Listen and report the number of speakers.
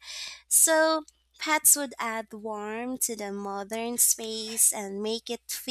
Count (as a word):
one